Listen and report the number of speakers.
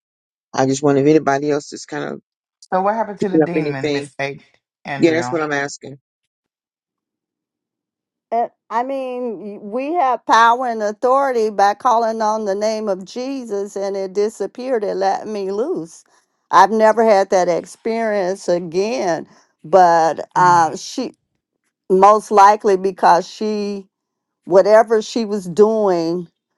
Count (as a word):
three